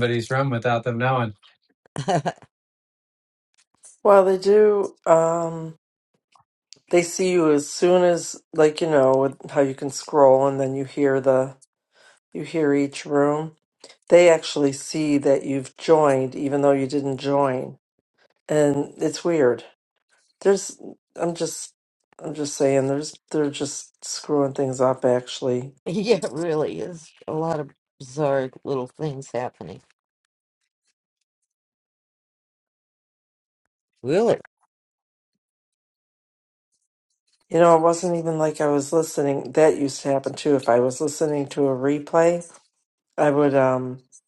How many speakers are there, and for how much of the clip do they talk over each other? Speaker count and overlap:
3, no overlap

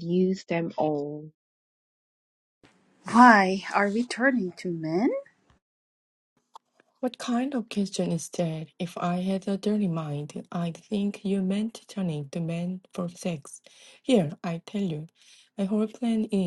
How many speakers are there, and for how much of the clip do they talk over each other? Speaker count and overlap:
3, no overlap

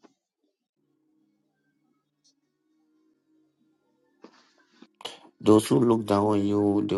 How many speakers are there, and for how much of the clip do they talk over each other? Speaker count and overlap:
1, no overlap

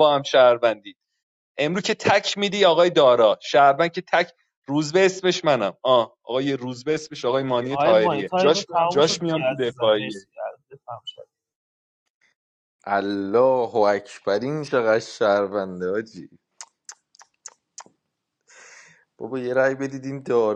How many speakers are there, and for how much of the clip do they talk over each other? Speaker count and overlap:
3, about 9%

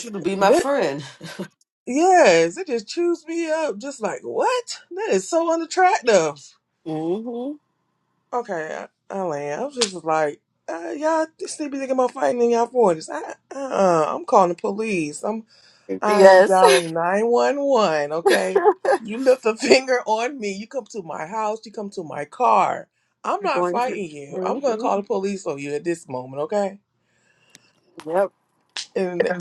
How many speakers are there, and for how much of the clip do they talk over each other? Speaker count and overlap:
3, about 7%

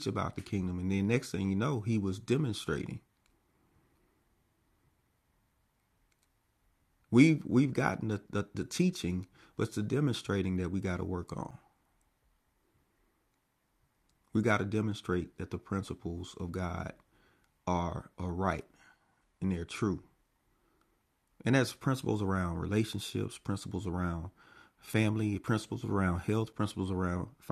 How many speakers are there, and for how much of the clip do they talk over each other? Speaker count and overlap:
1, no overlap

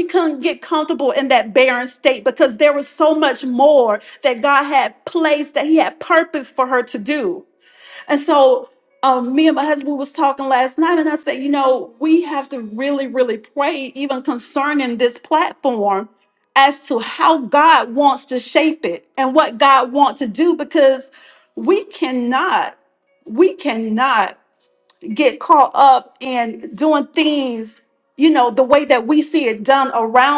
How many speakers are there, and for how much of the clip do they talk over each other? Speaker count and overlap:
1, no overlap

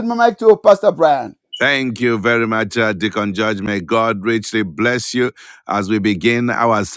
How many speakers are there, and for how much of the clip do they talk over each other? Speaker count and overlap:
2, no overlap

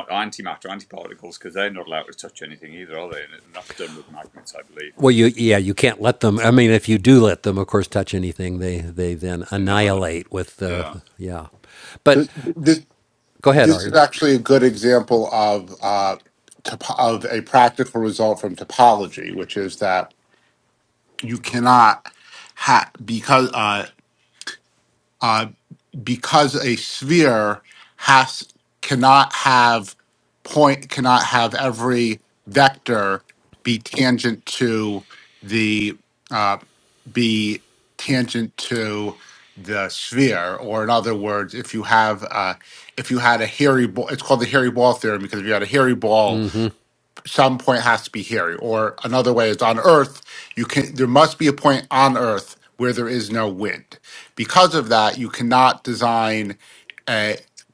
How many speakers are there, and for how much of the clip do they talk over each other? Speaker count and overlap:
3, about 2%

